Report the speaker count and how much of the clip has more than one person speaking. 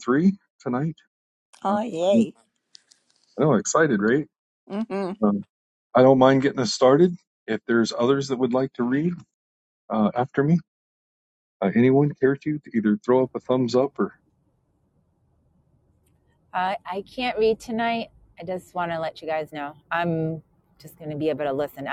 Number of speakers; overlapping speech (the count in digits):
3, about 1%